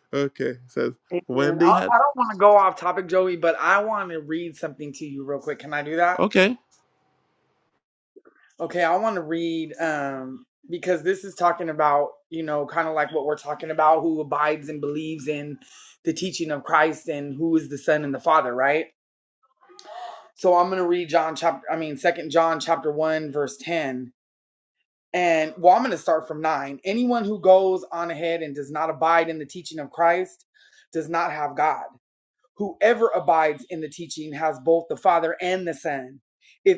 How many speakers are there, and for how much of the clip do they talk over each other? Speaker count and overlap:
2, about 2%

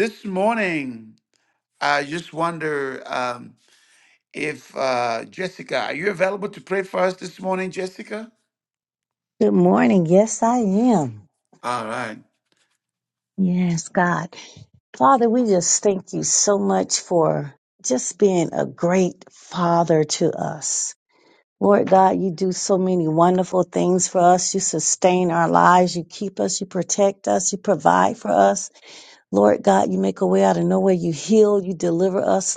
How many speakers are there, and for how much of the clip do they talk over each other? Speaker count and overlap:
2, no overlap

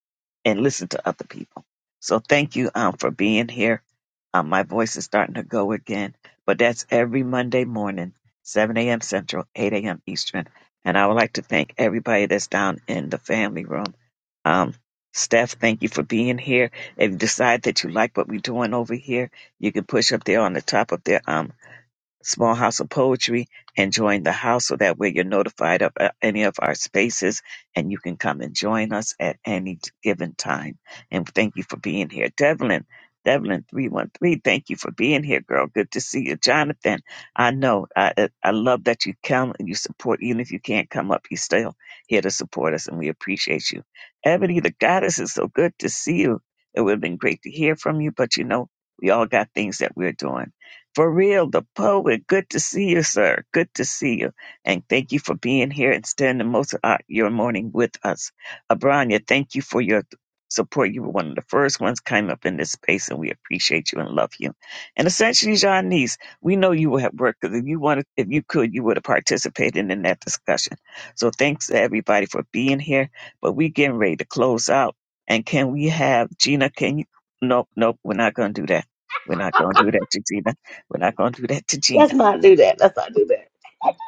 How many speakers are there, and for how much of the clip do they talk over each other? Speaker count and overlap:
2, under 1%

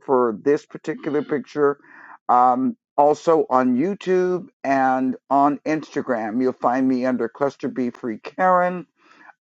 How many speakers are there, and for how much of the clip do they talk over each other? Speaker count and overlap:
1, no overlap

